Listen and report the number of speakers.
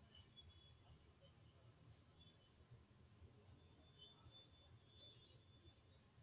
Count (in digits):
0